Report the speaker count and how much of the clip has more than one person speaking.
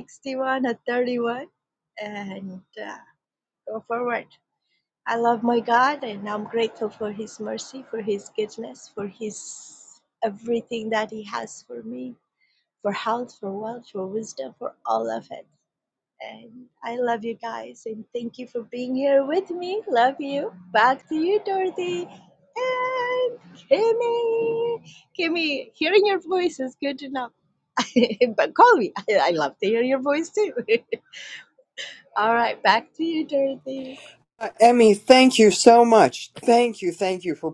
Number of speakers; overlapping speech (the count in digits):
2, no overlap